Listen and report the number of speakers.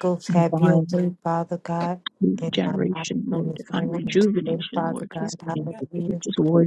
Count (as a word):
two